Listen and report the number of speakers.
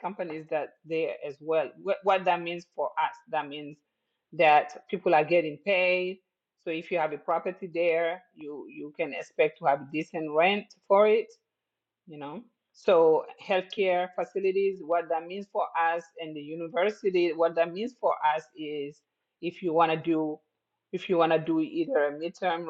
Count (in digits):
1